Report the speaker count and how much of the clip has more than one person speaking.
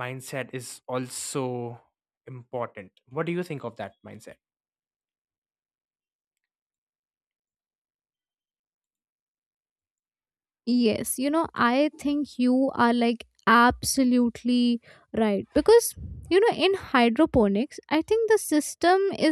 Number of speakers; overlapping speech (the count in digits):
2, no overlap